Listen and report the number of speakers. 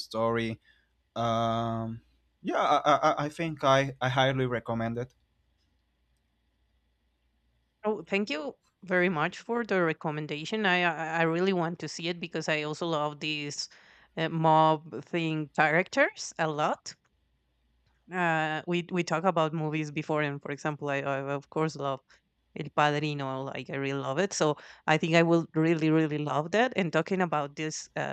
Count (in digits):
2